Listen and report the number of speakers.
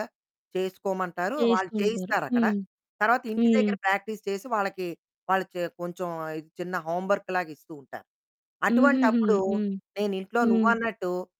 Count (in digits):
2